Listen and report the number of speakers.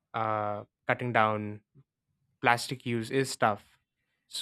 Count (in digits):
1